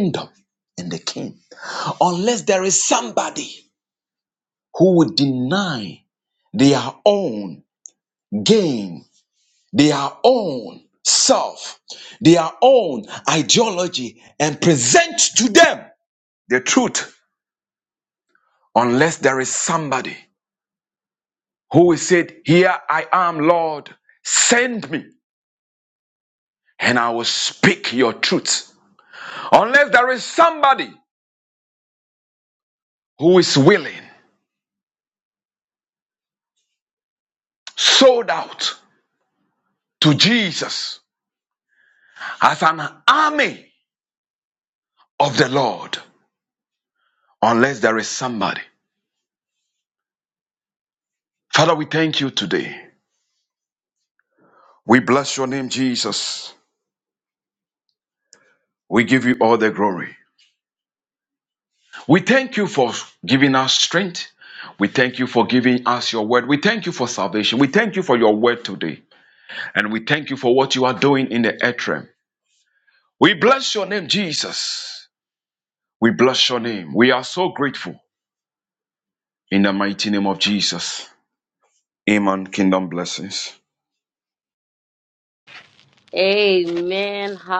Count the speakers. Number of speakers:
2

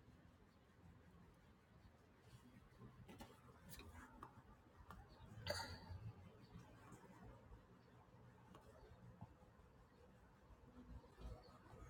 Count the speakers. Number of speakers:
0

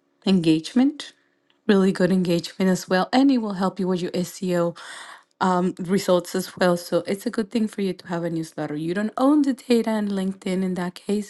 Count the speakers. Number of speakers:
1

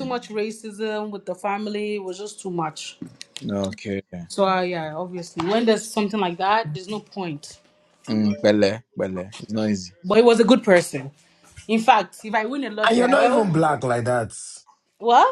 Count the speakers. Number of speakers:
3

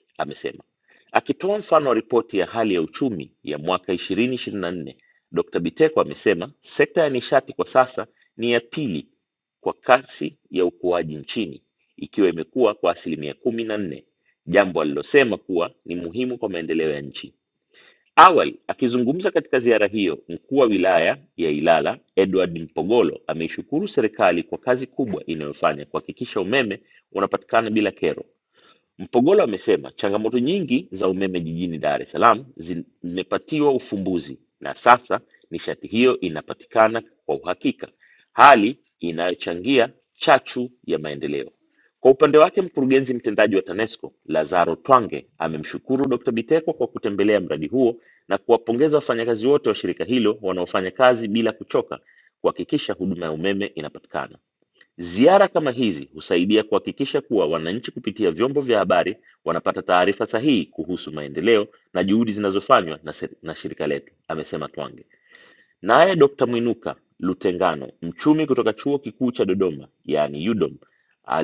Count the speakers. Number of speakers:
1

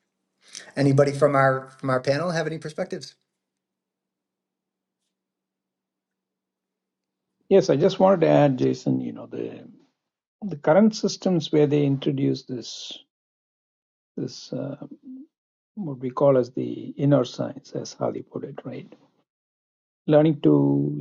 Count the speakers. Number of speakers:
2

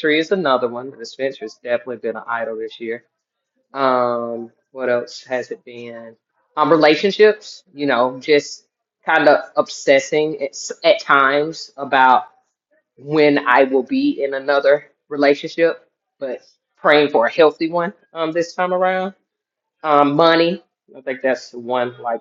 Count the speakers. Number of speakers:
1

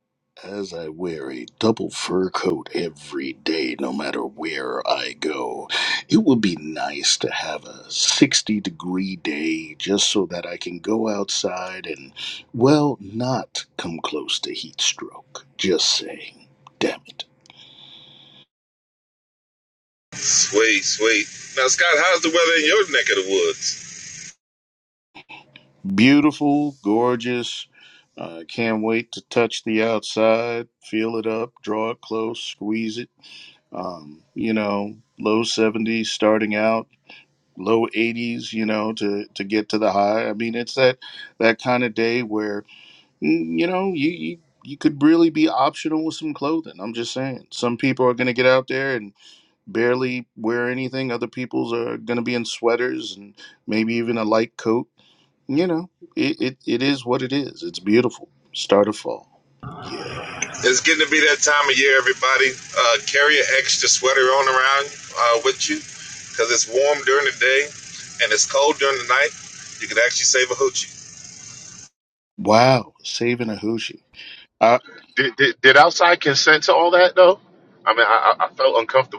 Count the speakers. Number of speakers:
3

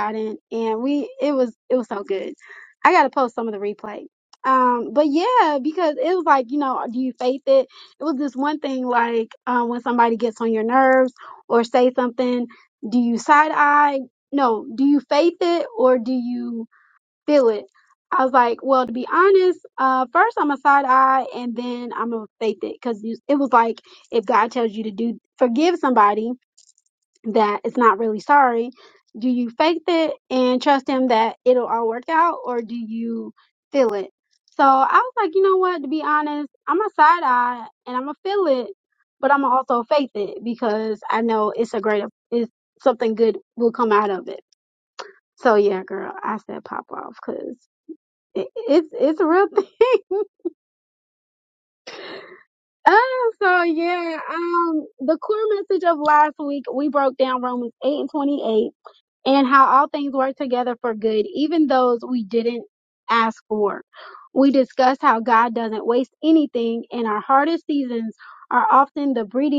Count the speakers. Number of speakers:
1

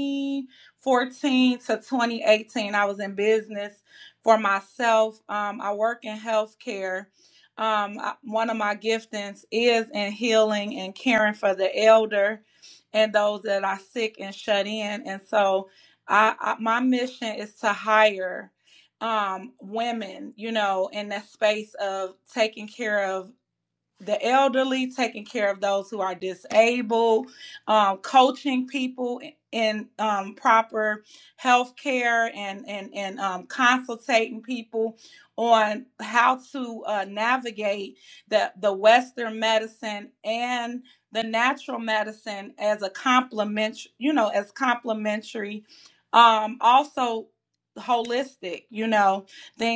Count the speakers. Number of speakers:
1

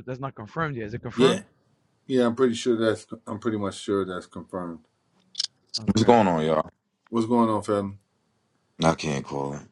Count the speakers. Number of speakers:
3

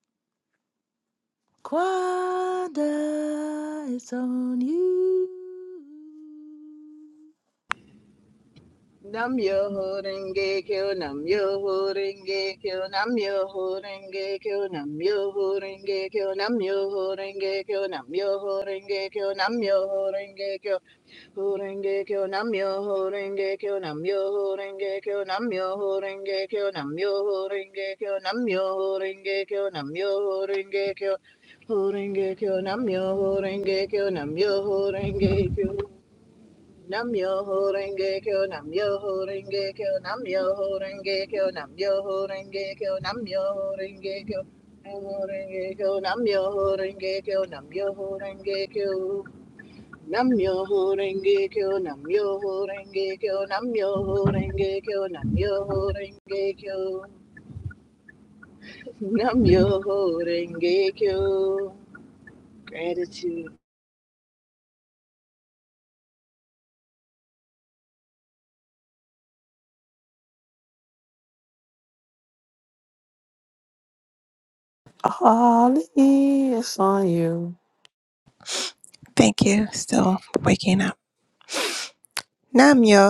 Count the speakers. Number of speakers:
4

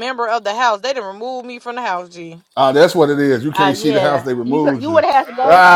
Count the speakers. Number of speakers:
3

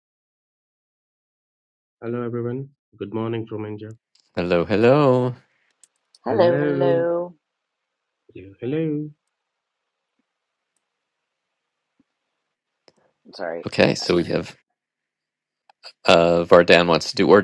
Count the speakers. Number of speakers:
3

